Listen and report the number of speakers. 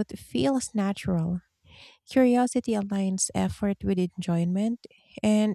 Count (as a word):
one